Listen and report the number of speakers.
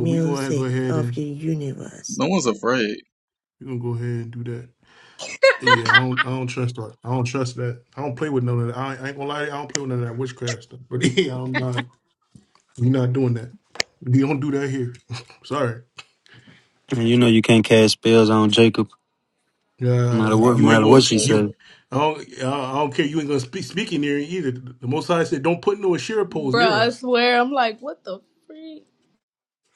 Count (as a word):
five